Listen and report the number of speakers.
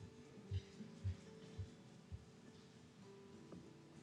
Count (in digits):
0